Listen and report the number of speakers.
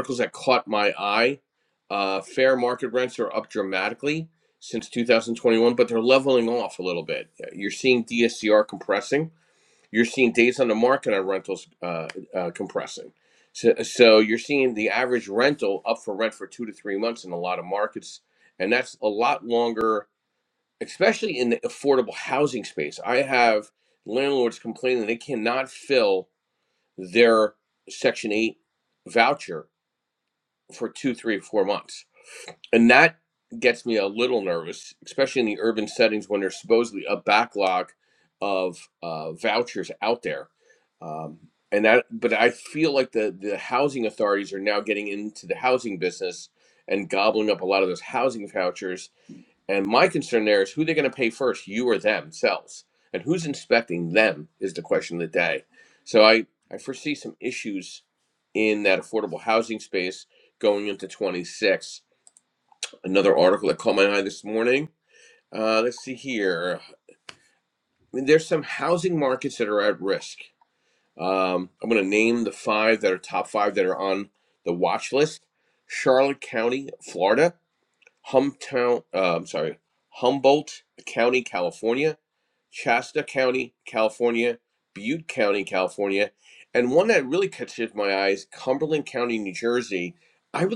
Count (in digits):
1